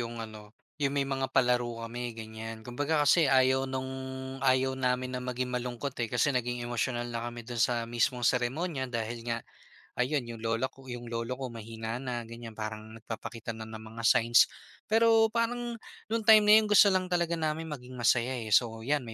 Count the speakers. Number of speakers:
1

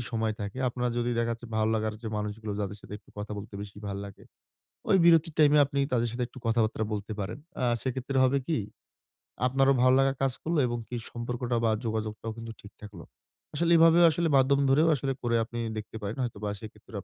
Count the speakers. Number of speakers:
1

